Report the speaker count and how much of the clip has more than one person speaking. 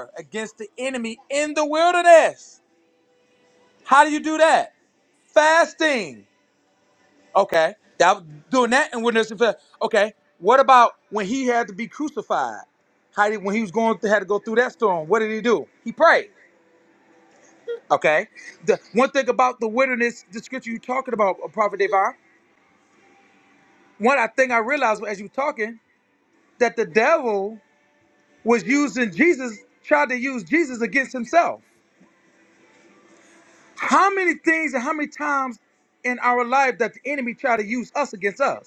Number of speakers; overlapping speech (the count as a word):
one, no overlap